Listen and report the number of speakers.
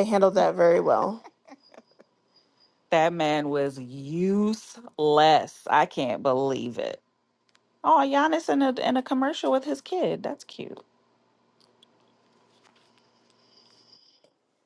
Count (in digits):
2